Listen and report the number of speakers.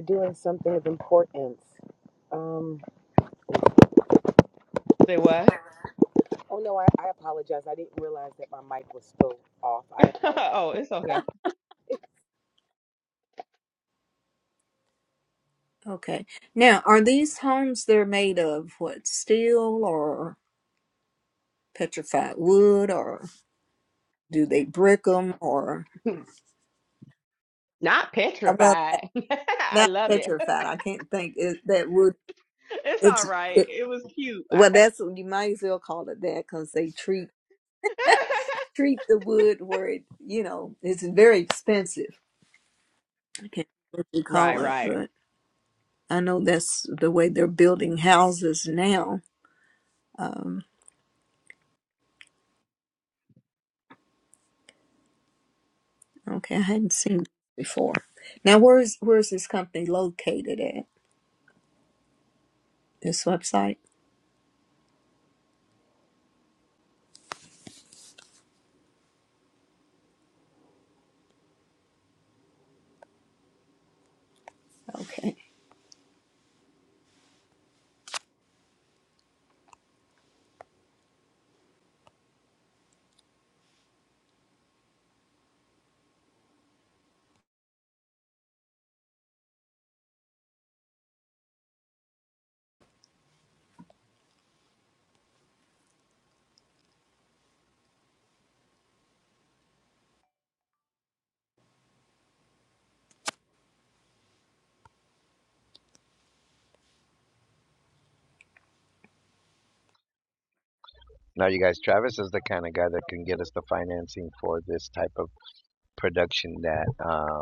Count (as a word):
four